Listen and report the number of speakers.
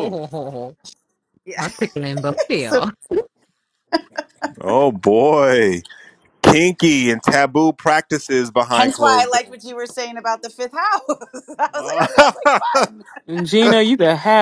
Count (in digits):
4